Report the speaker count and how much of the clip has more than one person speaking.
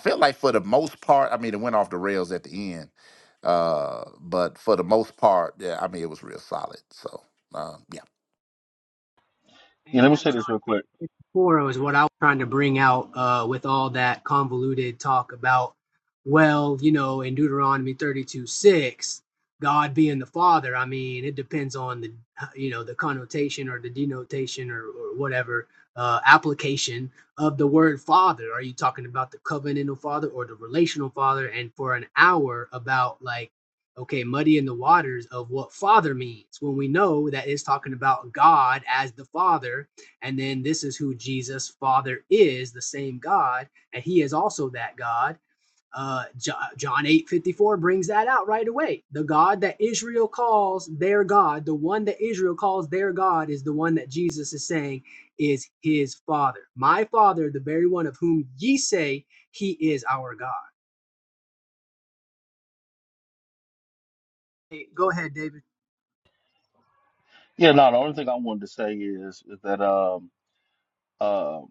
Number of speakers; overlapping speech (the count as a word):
three, about 1%